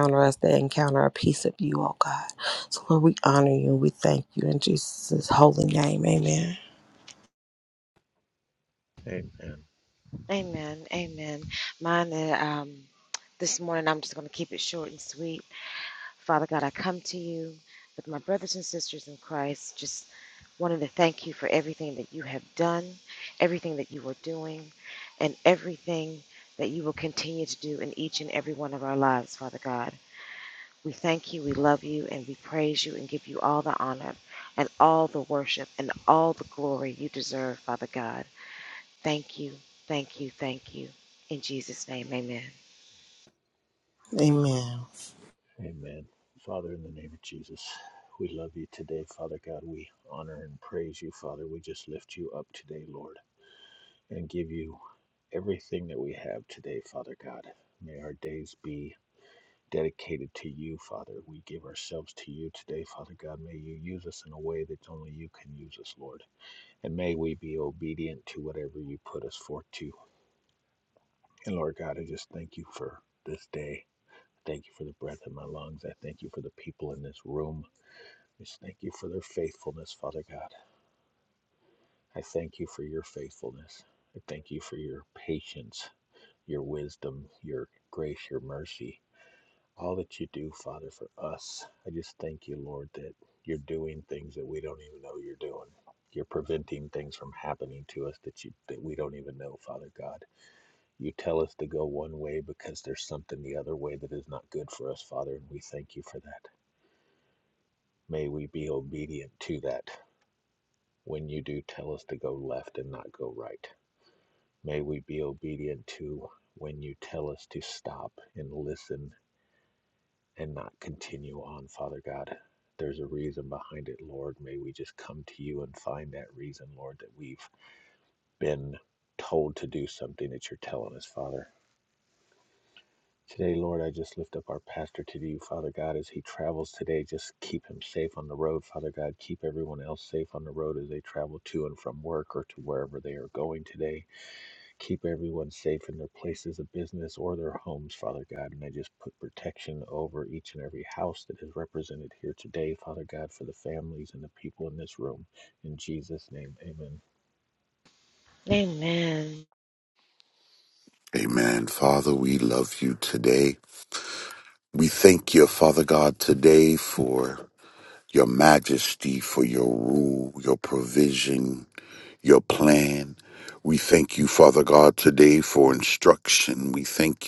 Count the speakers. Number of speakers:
four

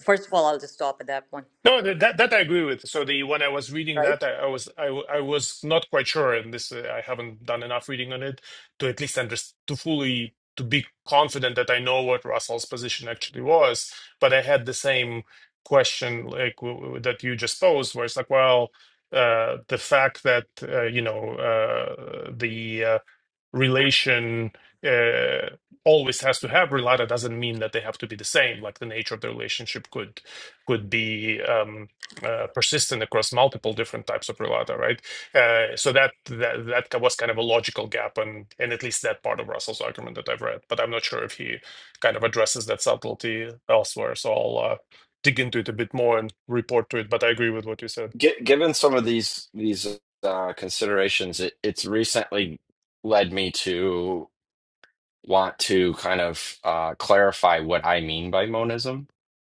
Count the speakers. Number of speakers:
three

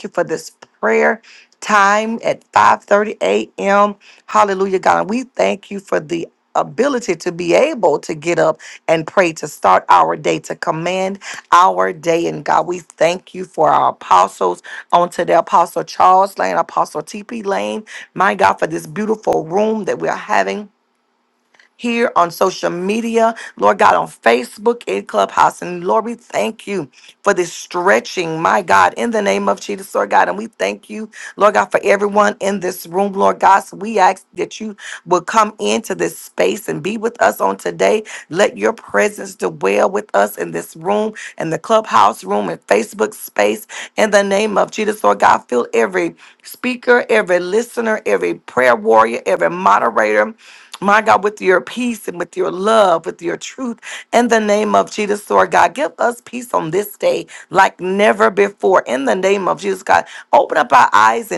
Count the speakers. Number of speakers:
one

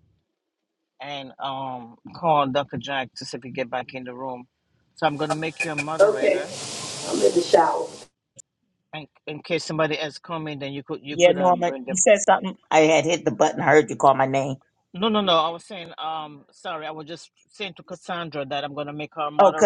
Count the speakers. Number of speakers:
three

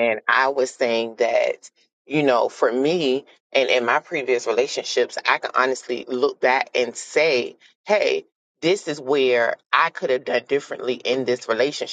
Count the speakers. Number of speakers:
one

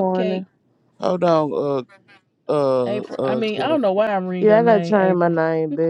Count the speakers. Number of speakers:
three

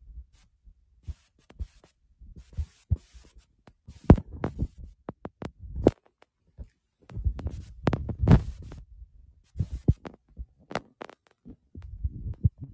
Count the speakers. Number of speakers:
zero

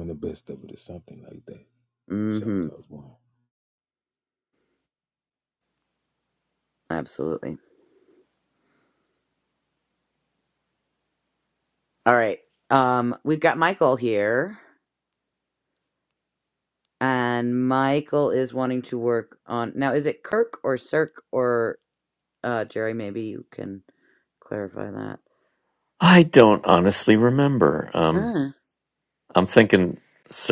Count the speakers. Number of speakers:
three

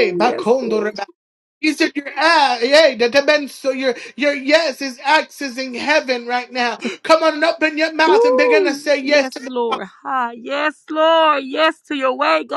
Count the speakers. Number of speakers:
two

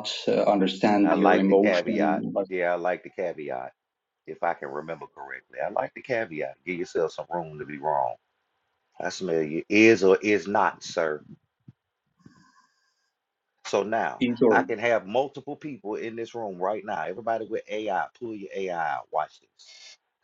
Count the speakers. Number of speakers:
two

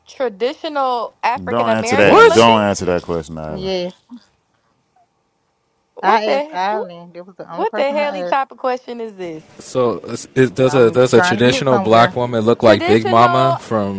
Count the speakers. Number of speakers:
four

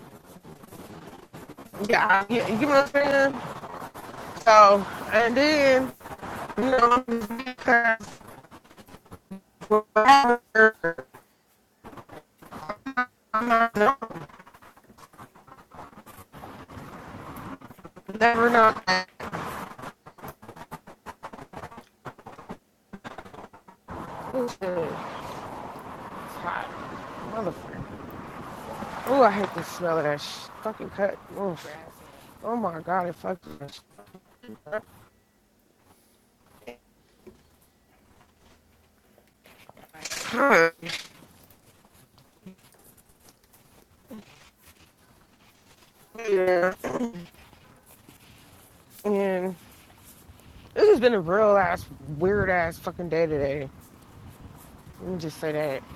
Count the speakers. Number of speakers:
one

